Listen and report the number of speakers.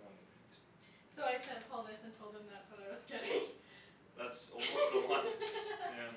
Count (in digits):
2